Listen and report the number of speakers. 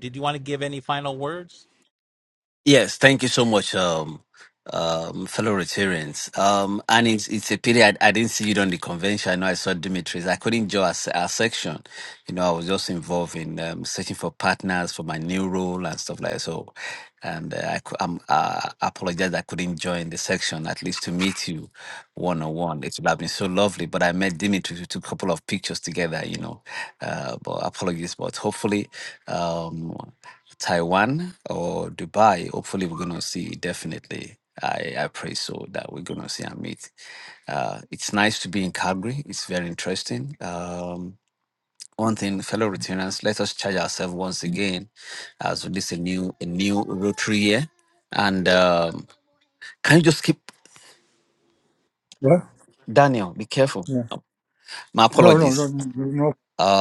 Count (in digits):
3